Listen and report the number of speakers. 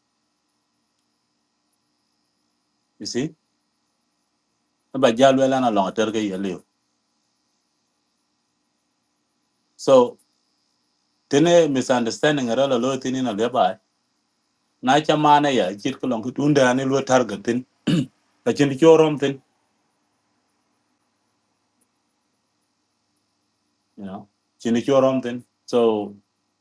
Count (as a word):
one